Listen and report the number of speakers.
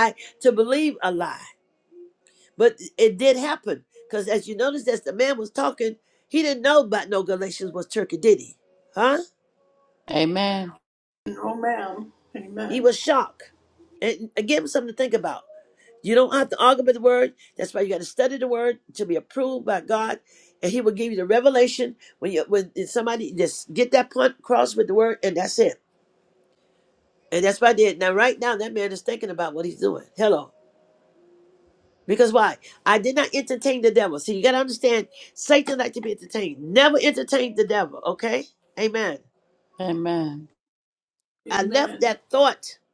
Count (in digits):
3